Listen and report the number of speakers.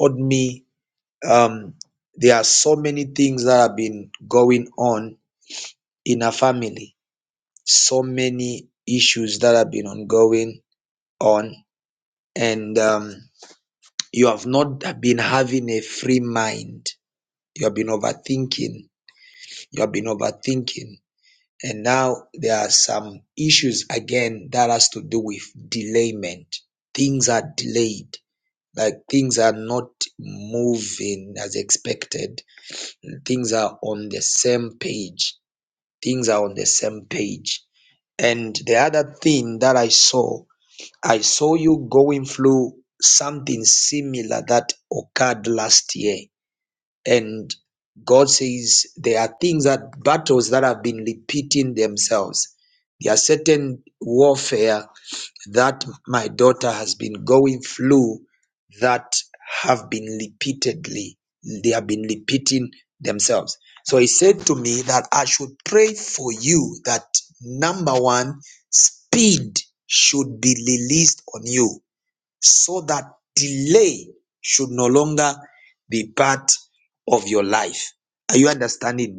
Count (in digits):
1